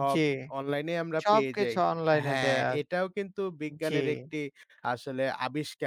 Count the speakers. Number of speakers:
2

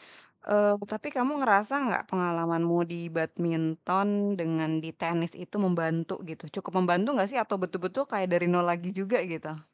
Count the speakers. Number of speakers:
1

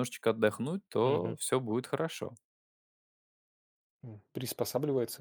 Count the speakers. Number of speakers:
2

